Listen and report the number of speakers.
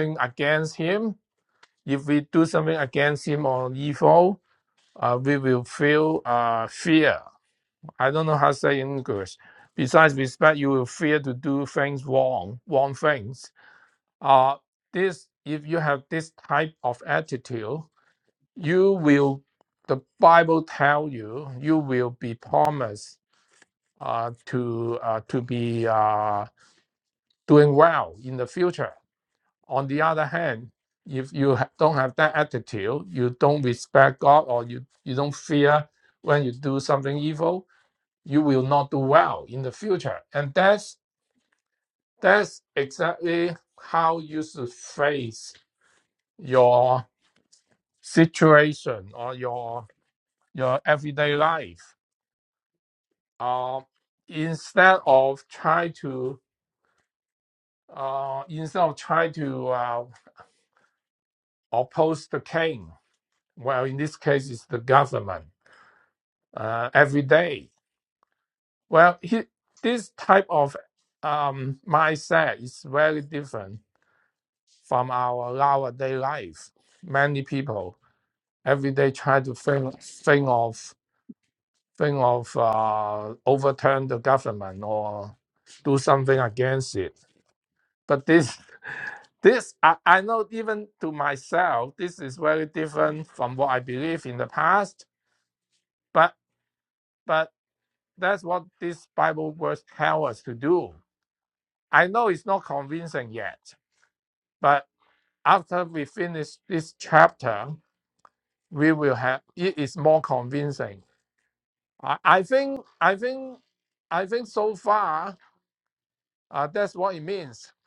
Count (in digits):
1